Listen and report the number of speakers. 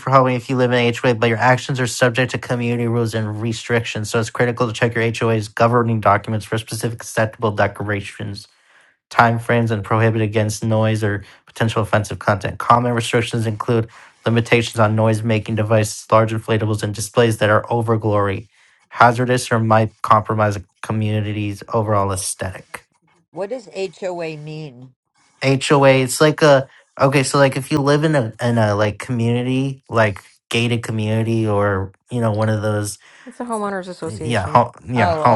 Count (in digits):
3